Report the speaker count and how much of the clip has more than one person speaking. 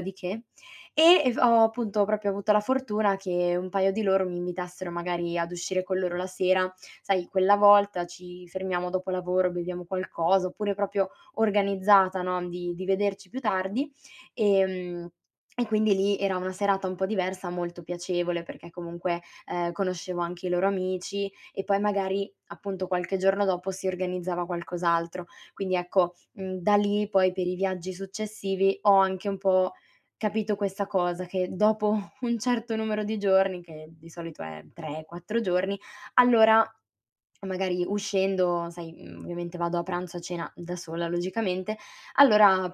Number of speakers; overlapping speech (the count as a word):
one, no overlap